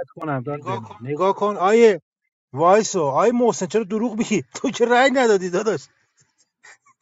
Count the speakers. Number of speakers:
one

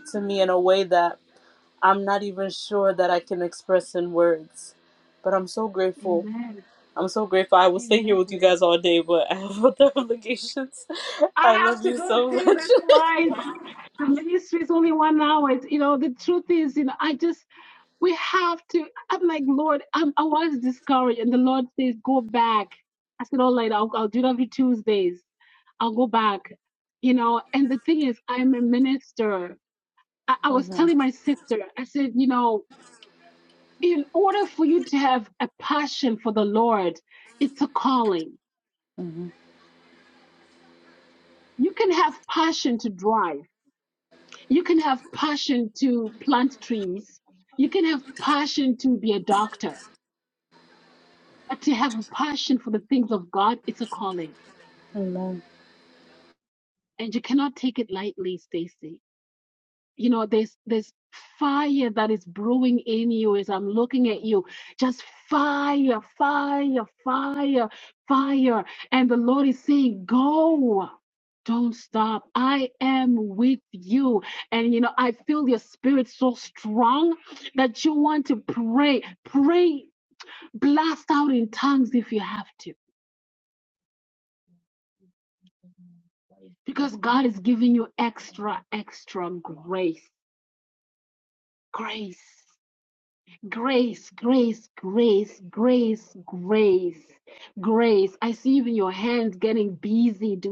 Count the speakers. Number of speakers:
two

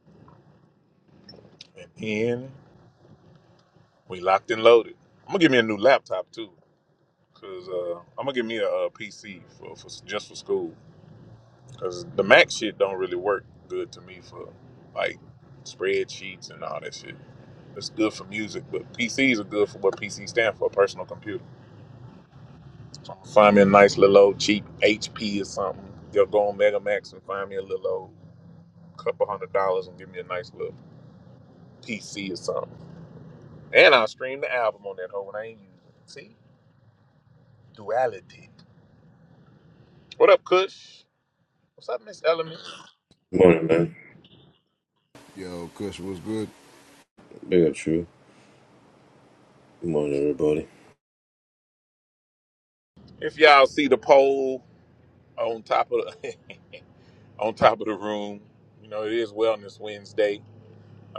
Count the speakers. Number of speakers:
three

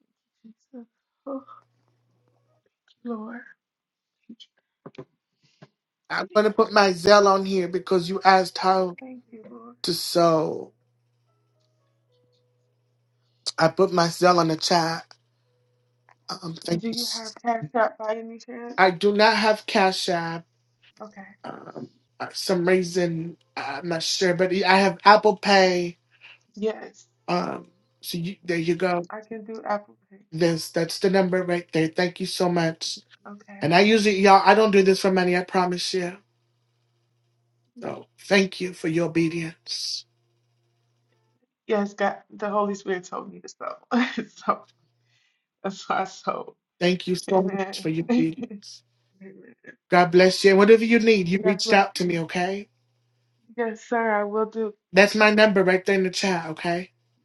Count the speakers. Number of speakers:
two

